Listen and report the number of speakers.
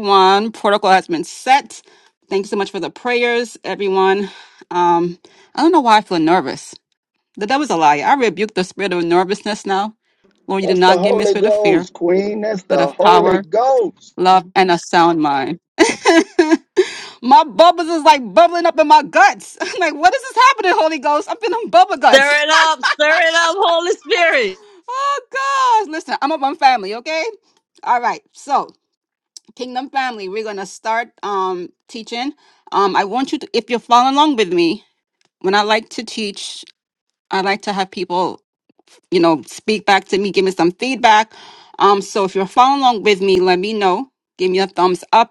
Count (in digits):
3